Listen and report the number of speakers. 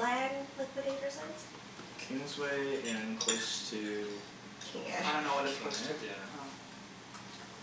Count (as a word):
three